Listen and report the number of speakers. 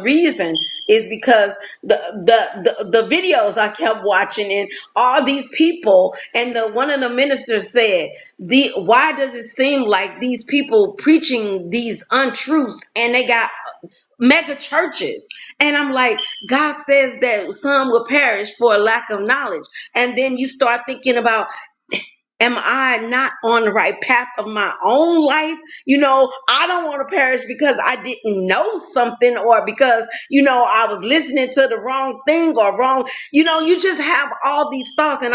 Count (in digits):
1